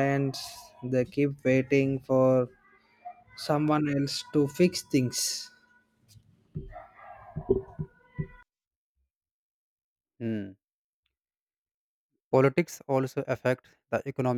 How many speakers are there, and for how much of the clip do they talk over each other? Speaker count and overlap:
two, no overlap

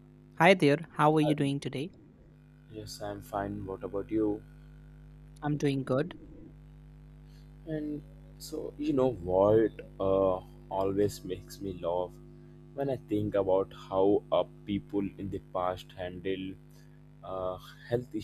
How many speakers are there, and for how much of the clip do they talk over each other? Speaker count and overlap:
two, no overlap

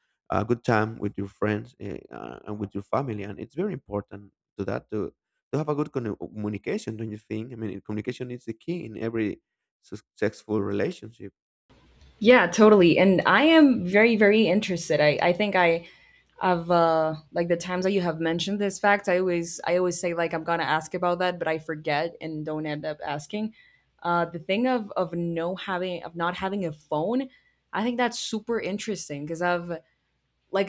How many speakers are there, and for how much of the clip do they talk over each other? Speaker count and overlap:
two, no overlap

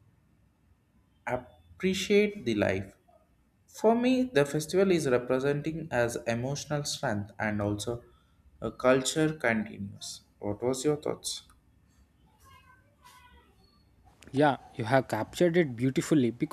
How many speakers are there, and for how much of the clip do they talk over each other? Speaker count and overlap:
two, no overlap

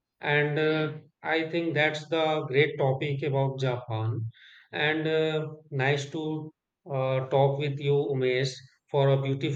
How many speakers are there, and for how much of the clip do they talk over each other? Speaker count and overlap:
one, no overlap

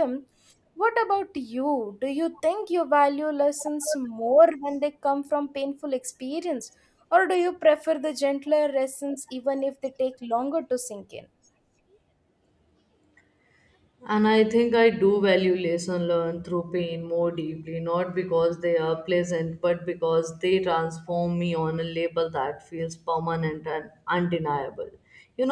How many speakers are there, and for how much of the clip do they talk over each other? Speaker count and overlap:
two, no overlap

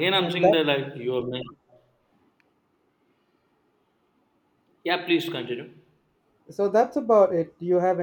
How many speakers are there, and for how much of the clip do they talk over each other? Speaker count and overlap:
two, about 5%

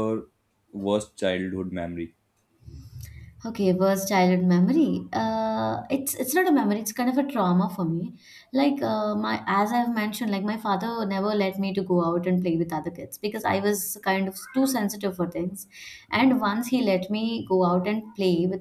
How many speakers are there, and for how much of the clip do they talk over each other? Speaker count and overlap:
two, no overlap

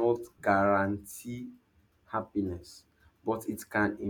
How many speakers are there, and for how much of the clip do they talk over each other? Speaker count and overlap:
one, no overlap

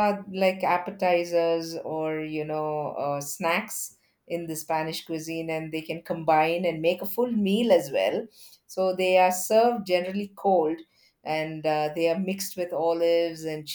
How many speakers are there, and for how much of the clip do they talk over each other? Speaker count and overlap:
one, no overlap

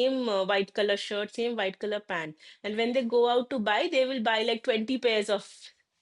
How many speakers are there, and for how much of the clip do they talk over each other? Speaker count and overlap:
one, no overlap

